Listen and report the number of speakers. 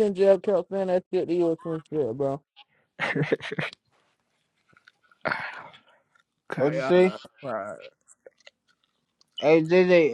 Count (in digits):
3